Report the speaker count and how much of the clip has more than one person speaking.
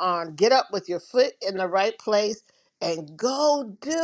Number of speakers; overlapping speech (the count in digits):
1, no overlap